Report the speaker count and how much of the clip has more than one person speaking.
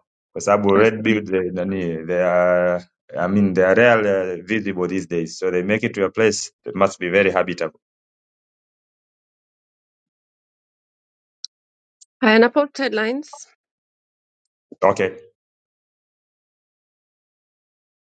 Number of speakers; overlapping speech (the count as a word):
two, about 2%